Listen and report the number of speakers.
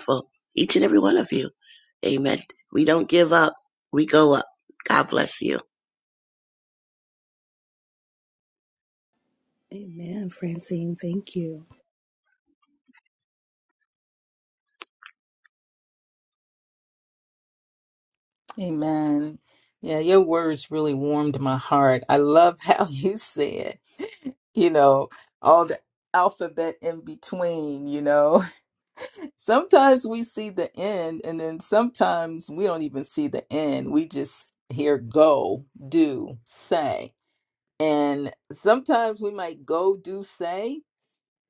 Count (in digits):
3